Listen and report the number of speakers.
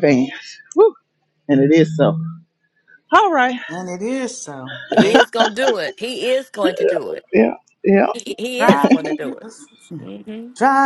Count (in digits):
3